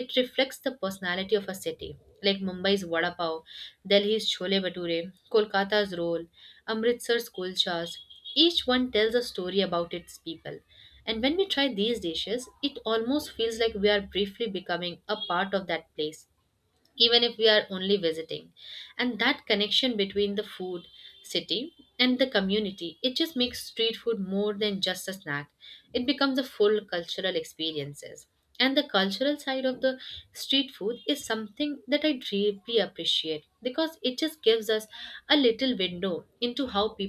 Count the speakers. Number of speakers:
1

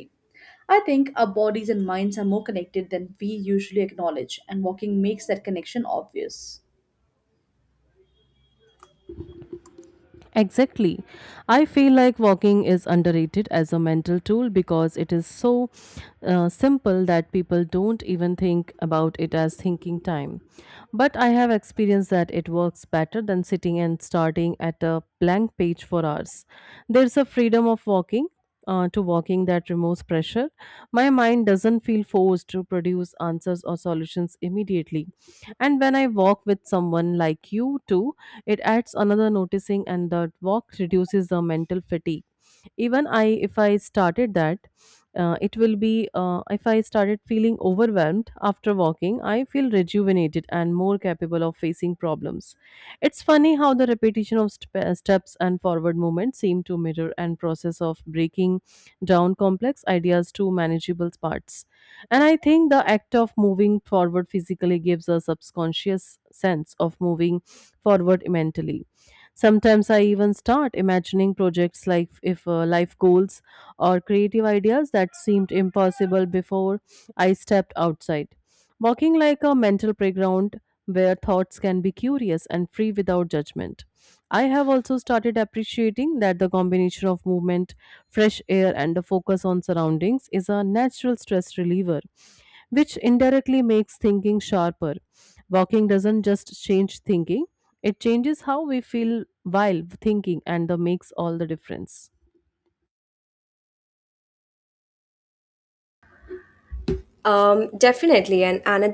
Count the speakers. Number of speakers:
3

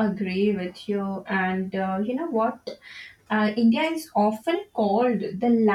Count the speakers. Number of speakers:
1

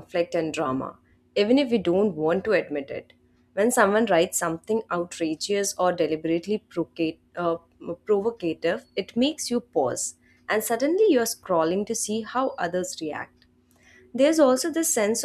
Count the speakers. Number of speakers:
1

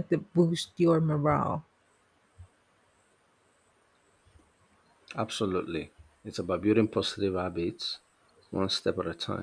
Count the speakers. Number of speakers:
2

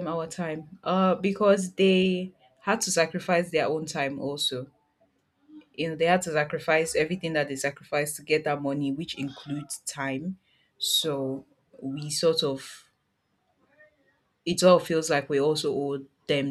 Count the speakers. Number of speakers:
1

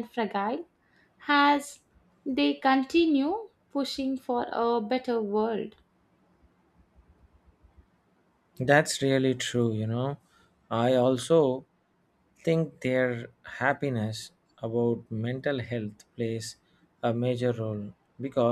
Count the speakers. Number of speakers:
2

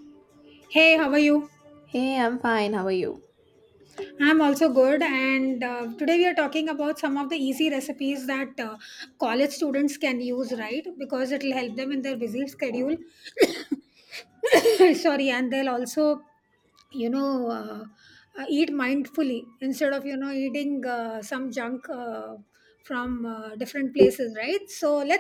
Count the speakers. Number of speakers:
2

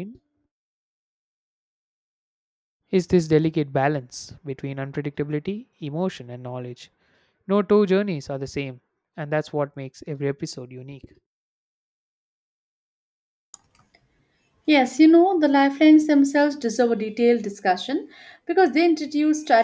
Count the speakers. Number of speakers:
2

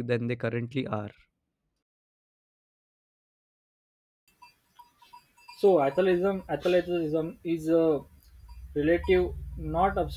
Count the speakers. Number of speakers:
2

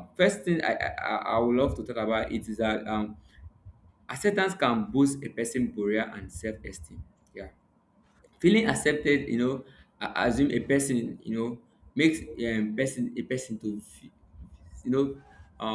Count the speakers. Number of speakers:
1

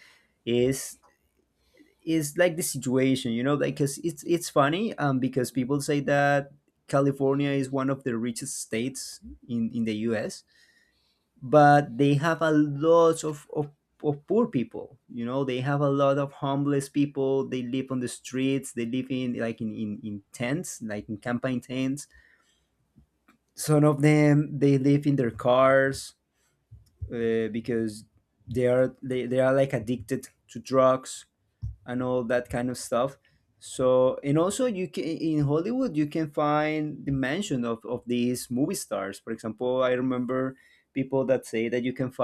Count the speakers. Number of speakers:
1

